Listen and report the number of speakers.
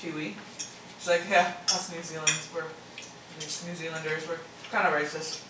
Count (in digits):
1